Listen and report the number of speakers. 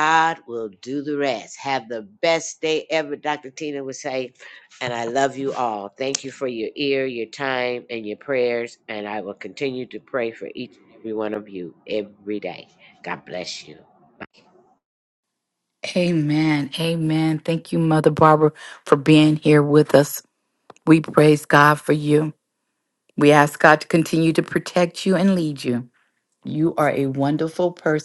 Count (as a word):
two